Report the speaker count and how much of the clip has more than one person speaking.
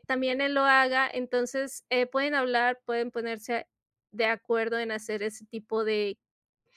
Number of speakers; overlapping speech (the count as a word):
one, no overlap